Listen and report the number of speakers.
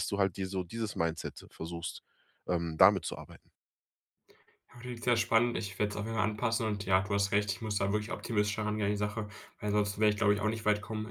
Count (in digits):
2